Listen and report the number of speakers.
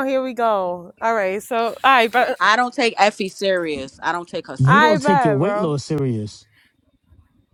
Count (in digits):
3